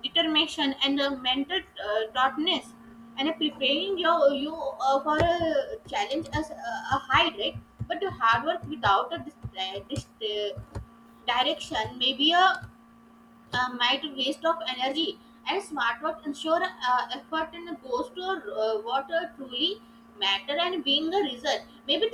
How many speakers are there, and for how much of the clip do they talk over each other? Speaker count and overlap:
1, no overlap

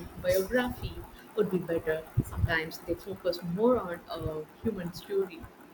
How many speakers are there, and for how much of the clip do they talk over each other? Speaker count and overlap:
1, no overlap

